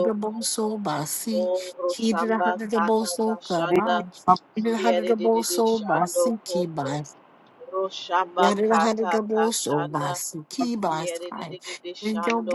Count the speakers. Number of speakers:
2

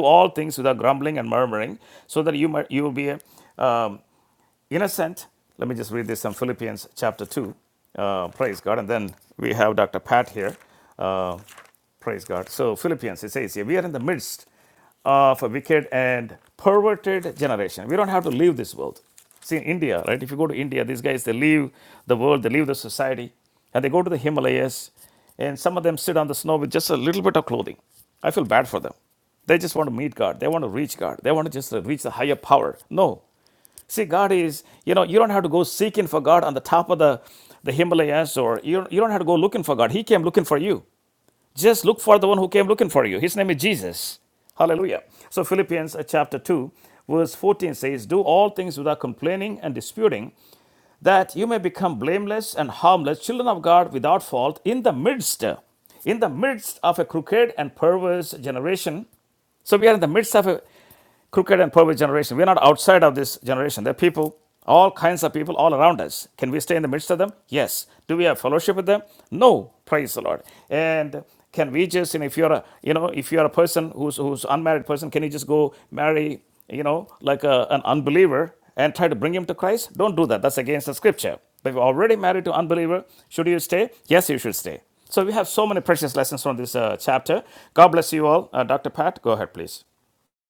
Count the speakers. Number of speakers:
1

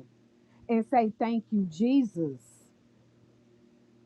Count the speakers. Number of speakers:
1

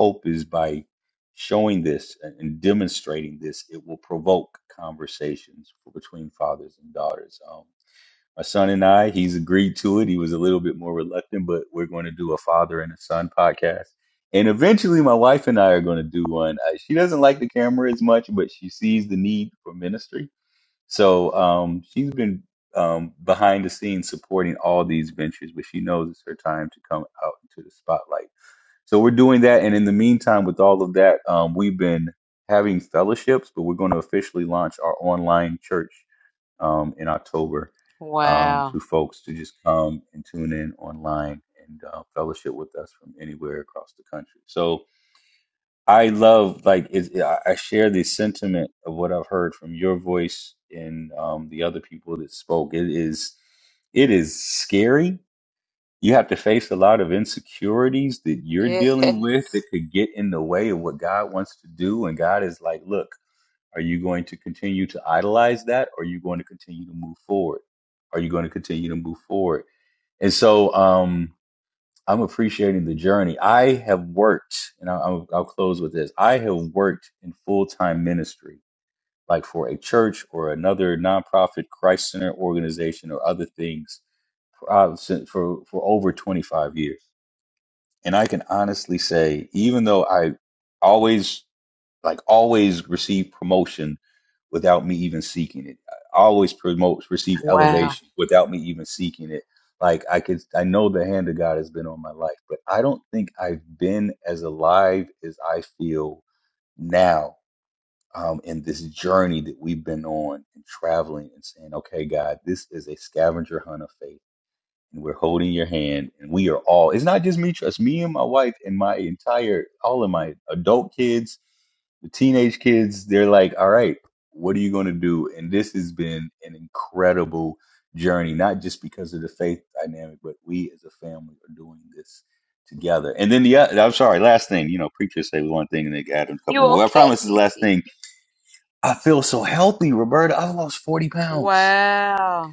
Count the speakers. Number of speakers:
2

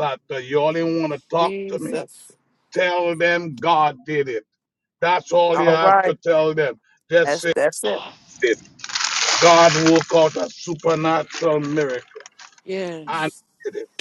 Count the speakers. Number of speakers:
2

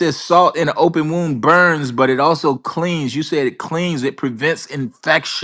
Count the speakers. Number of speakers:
1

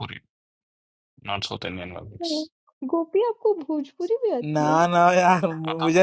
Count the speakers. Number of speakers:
3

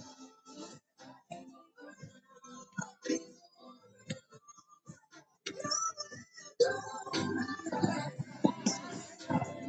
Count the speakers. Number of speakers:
0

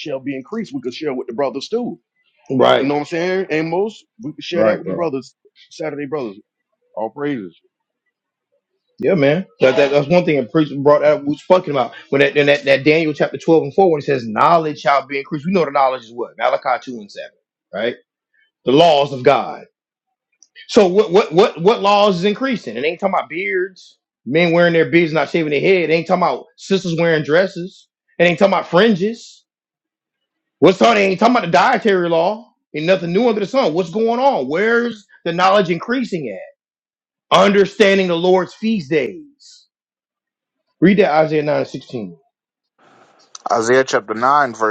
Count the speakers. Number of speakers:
3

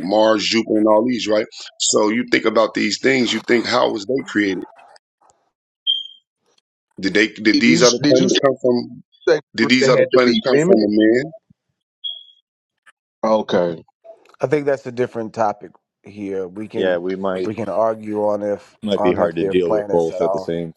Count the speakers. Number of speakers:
4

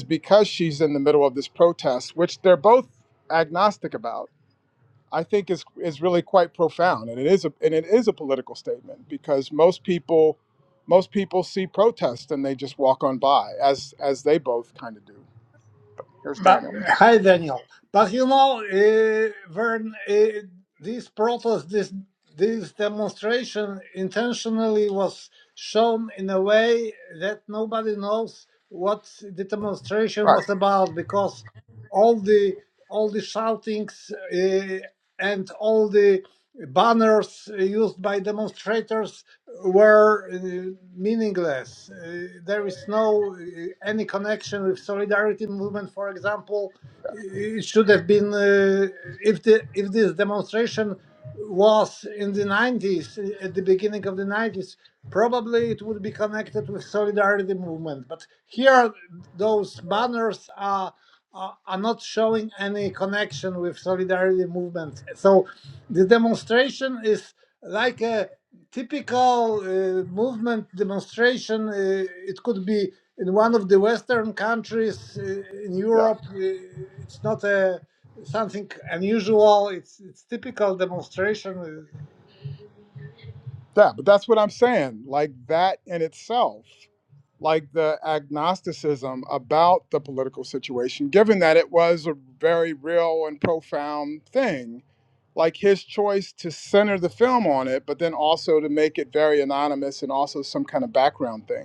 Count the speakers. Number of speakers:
2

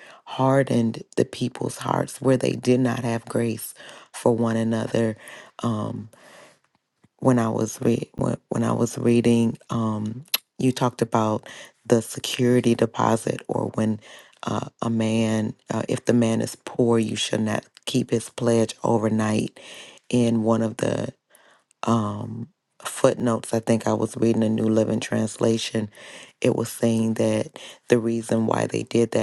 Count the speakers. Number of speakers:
1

